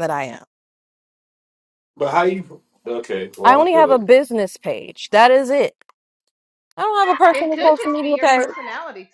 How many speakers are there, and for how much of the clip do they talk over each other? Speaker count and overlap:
3, about 19%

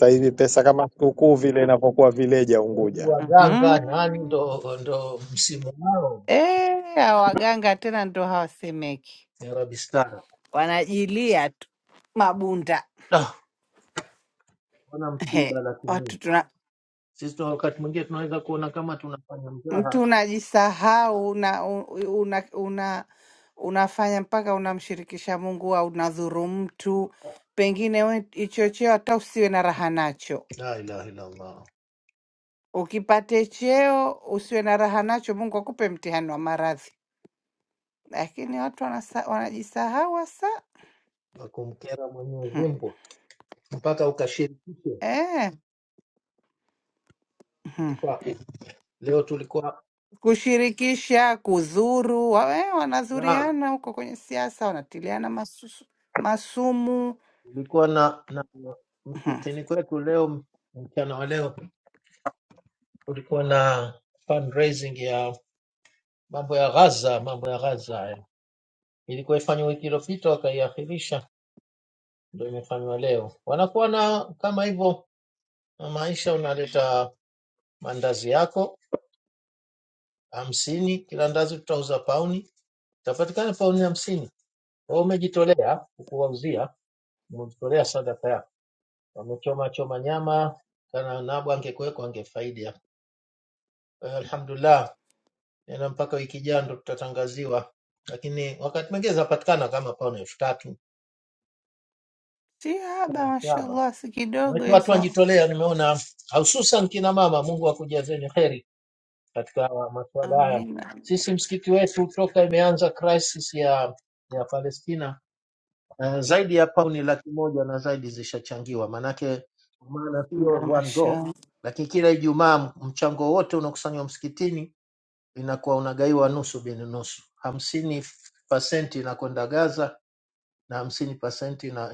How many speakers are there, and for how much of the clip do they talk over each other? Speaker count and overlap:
3, about 4%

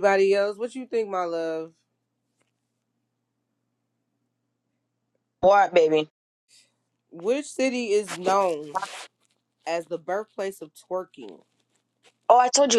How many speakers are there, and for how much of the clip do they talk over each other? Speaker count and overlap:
2, no overlap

